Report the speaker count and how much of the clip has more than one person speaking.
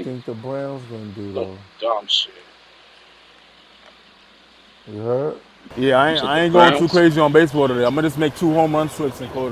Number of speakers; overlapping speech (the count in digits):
3, about 16%